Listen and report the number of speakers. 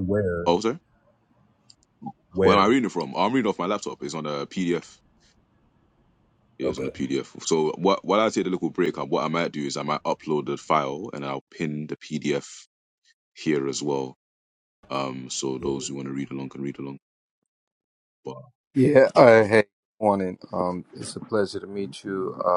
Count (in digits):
3